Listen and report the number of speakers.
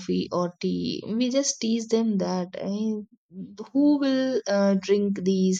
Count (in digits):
1